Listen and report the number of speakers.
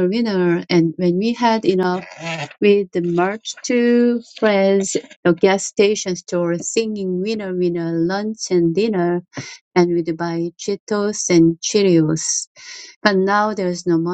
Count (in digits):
1